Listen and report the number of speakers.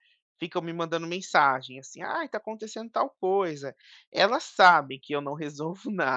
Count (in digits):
1